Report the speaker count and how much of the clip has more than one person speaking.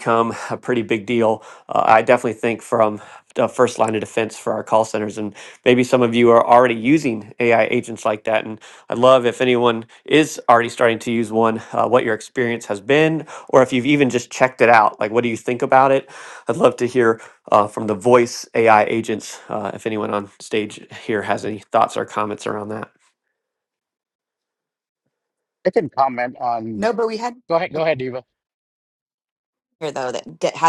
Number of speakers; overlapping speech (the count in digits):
3, under 1%